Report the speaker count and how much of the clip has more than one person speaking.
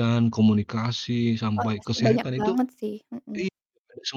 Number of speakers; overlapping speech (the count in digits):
2, about 25%